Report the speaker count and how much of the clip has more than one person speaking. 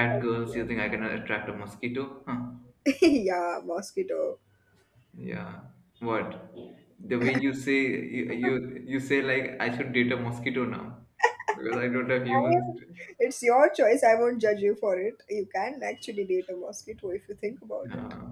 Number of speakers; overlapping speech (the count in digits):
2, about 4%